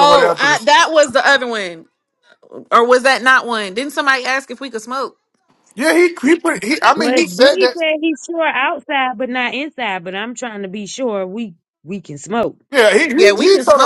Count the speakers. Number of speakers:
3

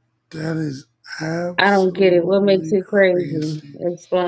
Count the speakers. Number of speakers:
2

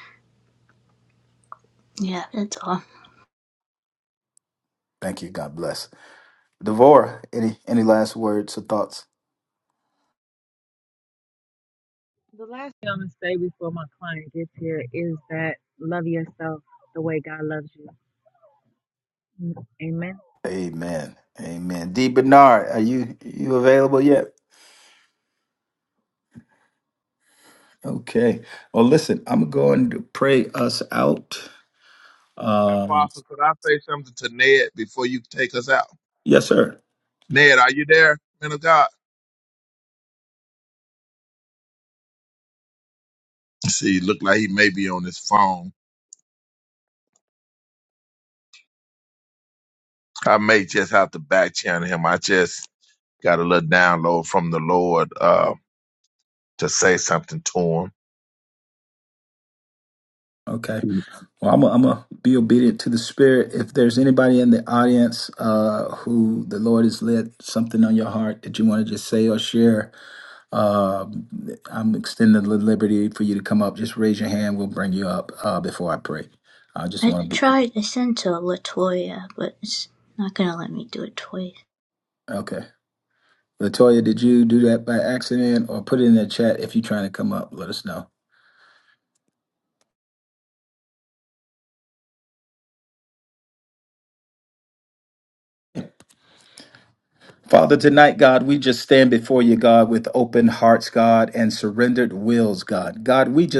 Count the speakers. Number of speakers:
4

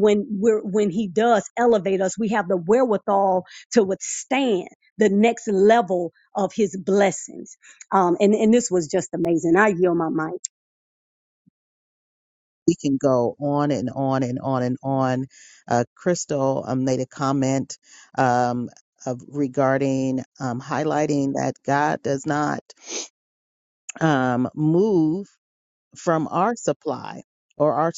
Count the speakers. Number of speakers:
2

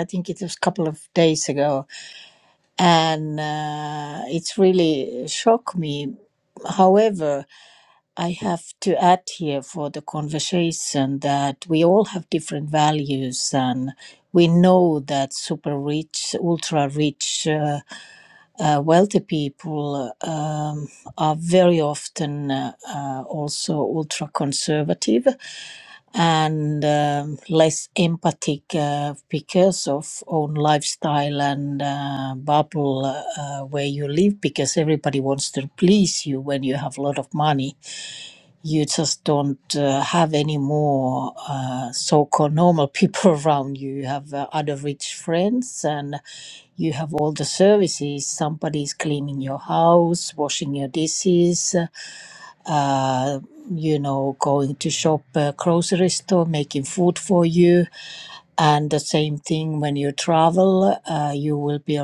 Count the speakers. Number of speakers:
1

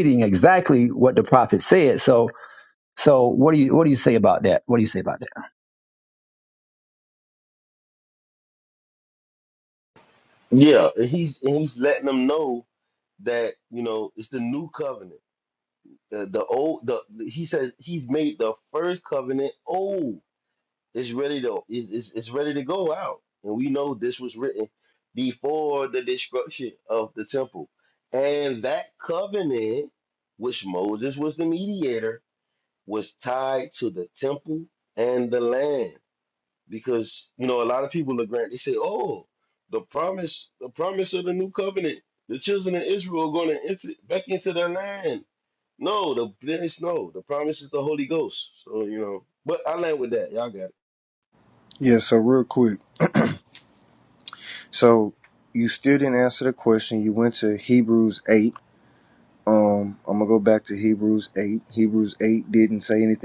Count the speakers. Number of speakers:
3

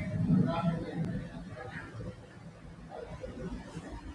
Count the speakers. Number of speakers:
0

